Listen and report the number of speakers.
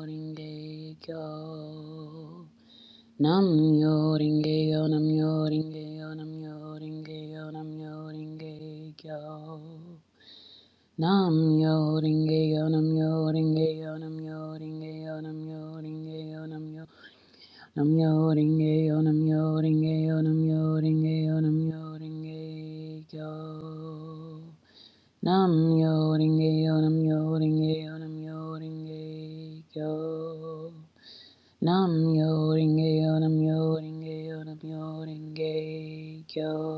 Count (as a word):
one